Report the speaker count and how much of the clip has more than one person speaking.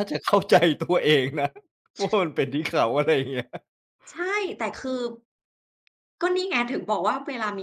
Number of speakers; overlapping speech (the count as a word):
two, no overlap